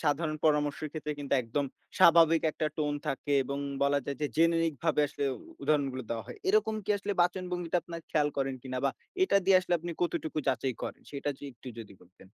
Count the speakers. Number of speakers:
1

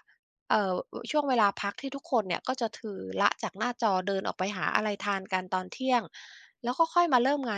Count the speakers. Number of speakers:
1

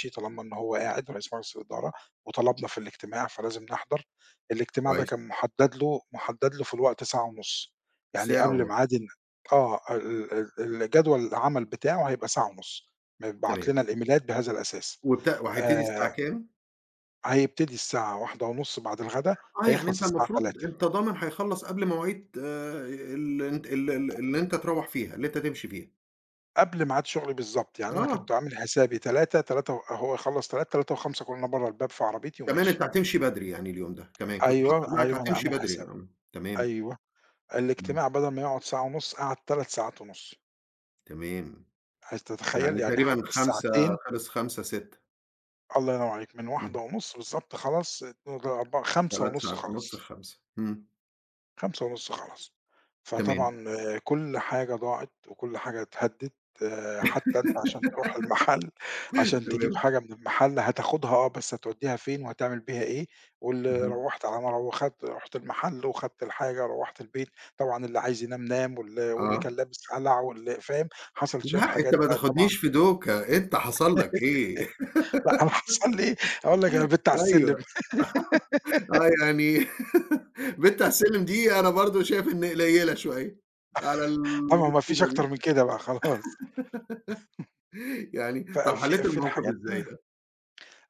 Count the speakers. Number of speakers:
2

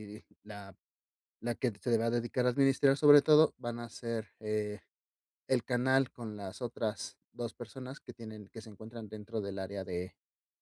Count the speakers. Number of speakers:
1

